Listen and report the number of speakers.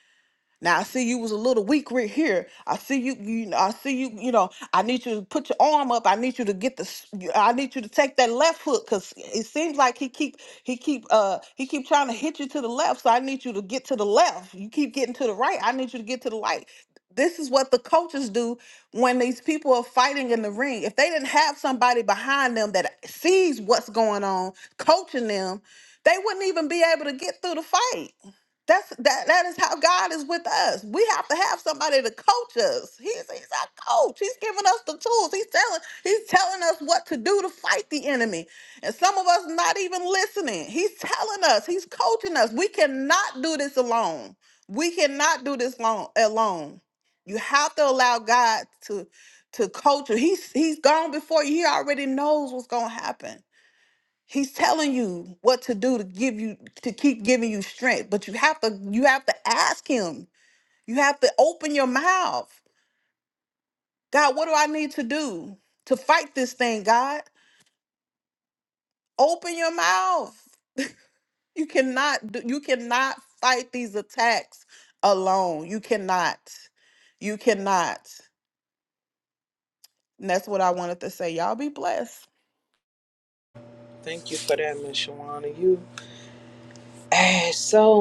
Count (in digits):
2